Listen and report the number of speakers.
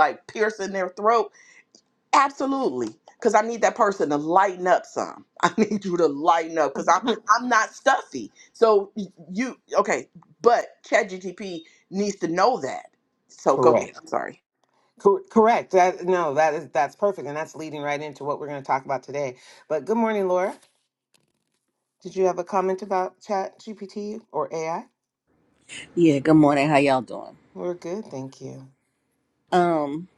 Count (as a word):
three